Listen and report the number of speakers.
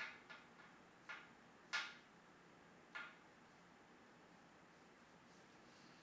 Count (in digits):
0